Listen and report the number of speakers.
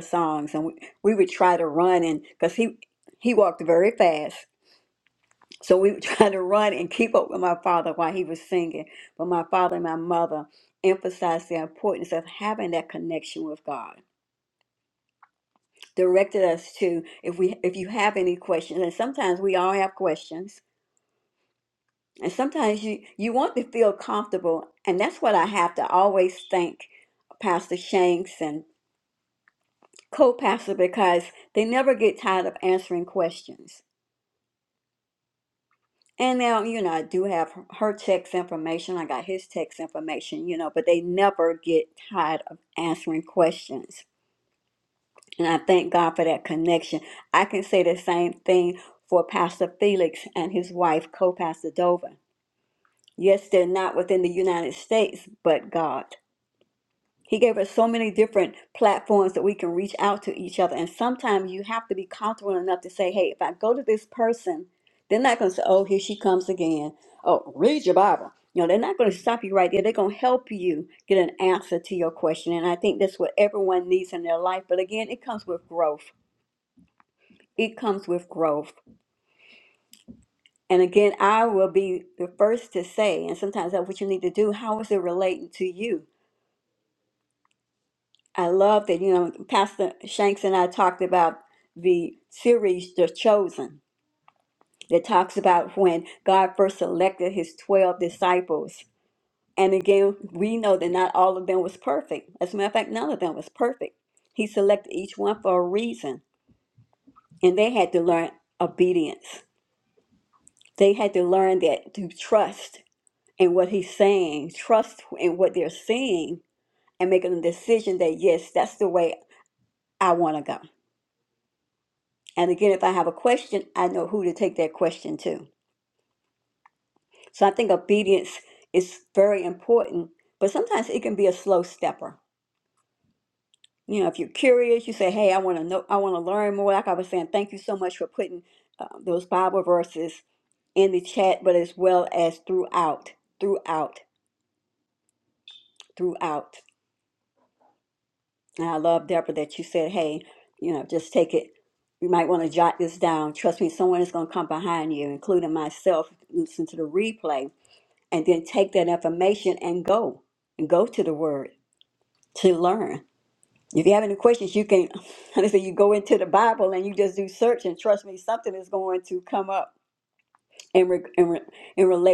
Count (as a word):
one